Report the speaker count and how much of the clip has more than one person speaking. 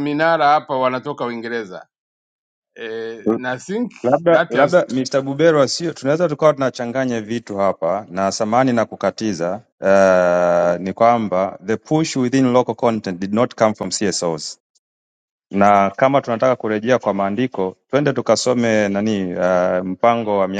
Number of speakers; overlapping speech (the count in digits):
2, about 2%